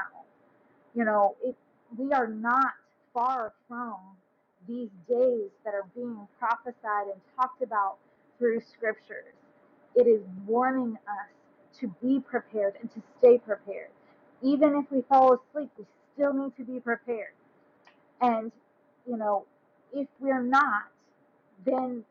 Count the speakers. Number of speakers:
one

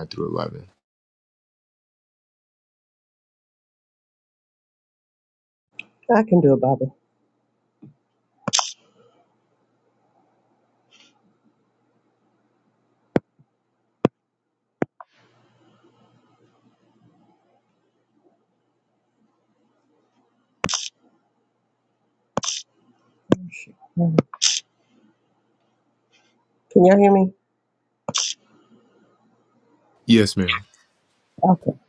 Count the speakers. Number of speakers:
two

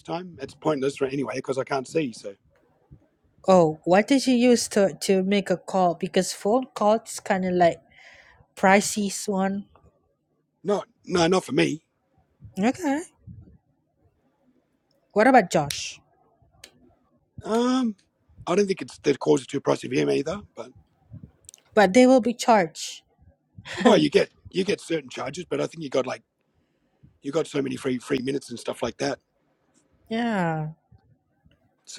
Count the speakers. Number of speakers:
two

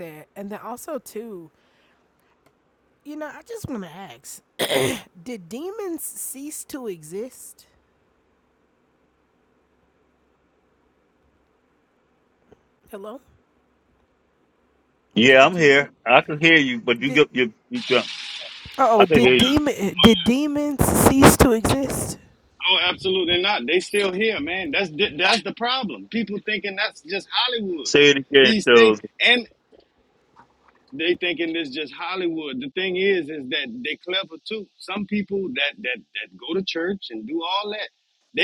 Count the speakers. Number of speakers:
three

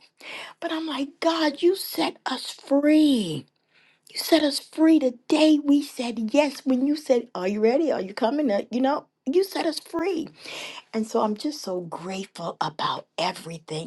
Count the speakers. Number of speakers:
one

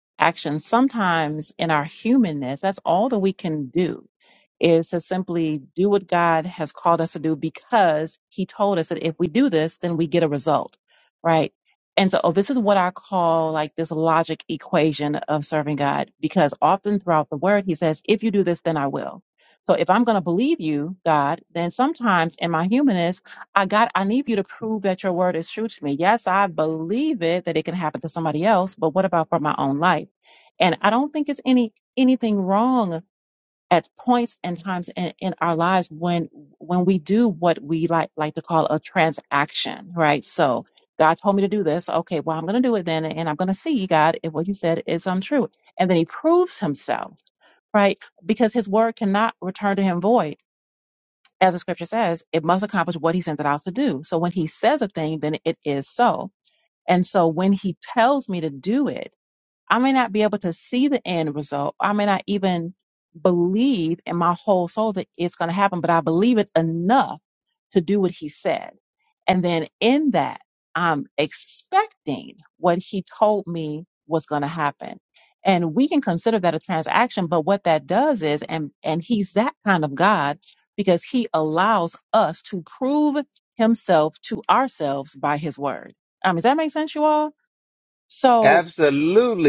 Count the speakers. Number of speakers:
two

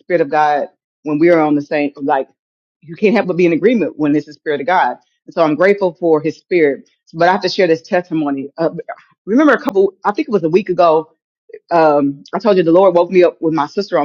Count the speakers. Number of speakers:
one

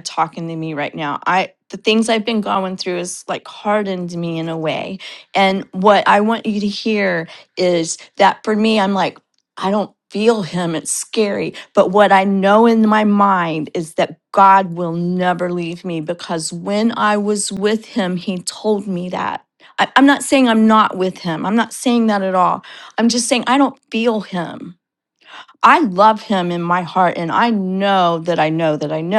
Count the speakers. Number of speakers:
one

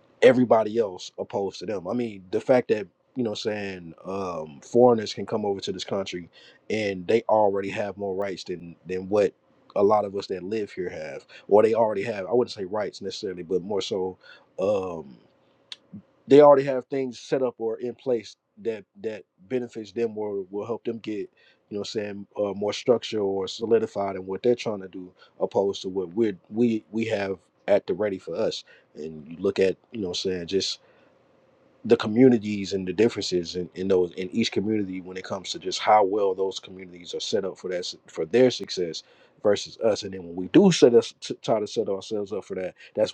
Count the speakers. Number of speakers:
one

